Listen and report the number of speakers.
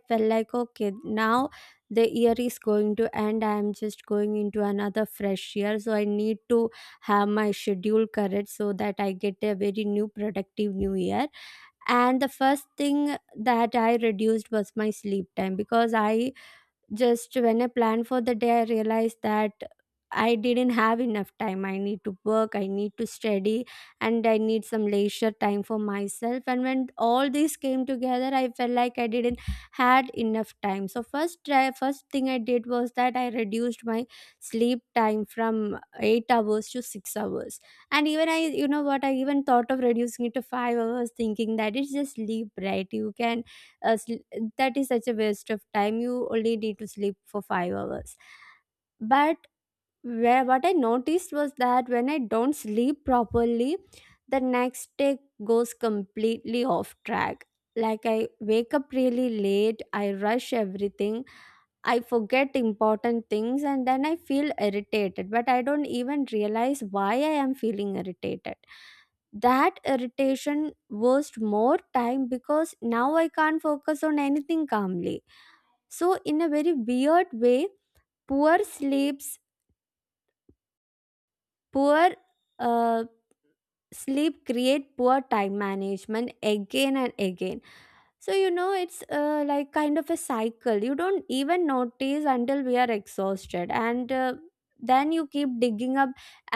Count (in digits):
1